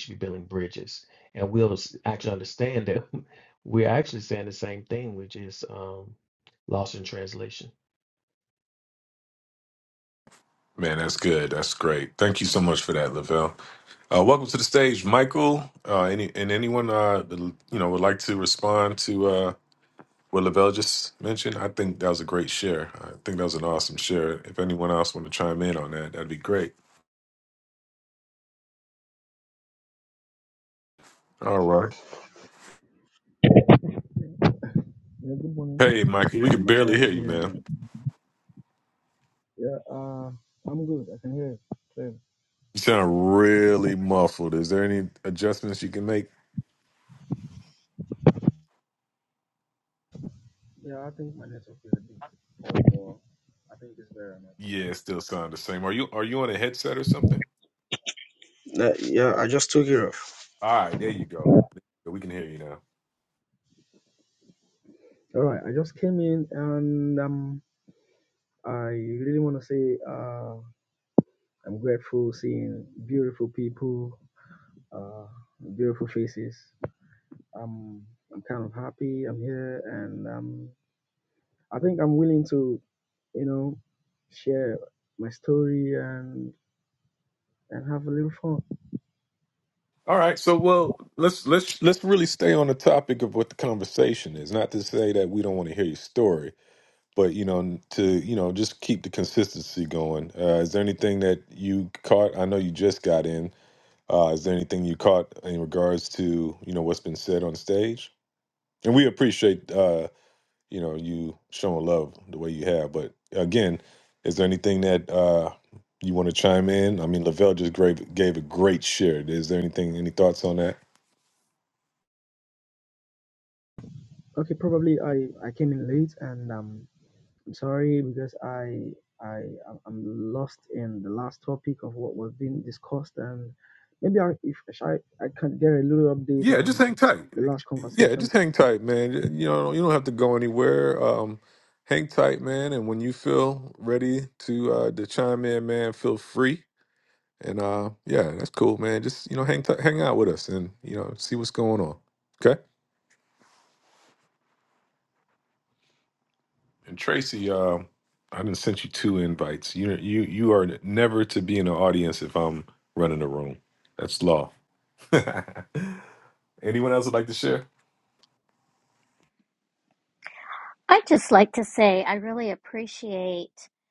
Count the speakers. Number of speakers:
4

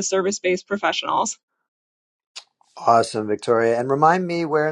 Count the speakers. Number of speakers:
2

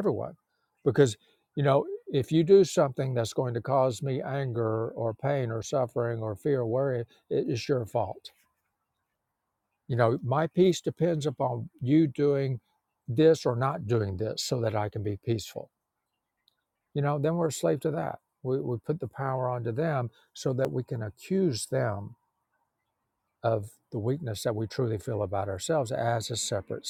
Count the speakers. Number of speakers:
1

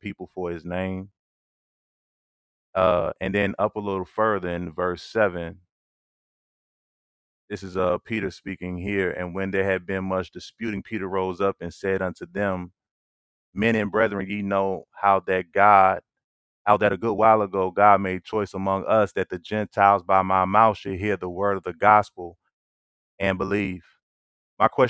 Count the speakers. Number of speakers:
1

